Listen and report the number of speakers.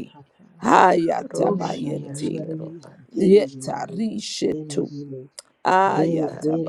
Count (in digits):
3